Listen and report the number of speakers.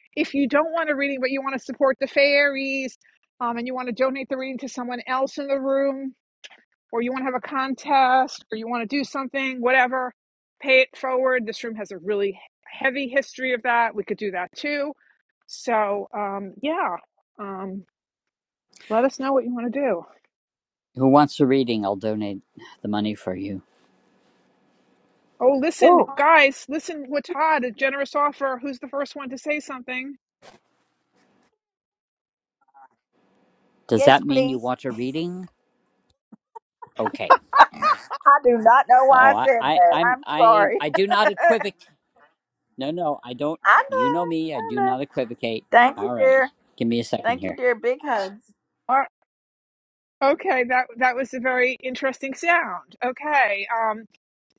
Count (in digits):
3